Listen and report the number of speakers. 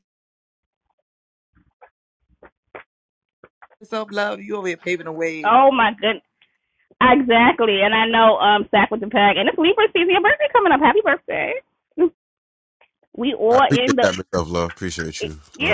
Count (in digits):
3